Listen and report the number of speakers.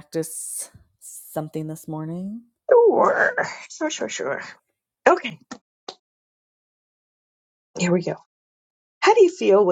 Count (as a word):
two